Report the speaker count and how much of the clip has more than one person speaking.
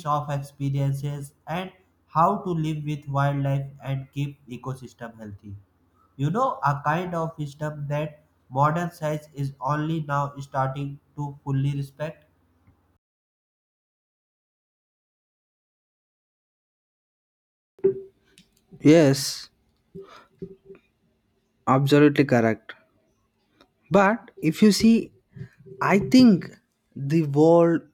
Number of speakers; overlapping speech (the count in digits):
2, no overlap